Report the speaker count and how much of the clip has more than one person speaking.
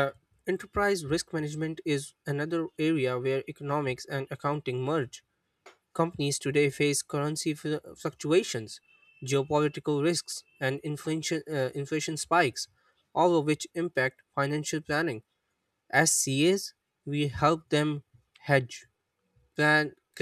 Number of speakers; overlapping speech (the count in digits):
1, no overlap